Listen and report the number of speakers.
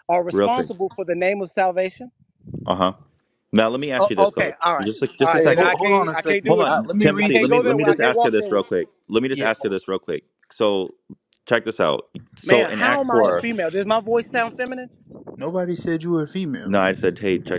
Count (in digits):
3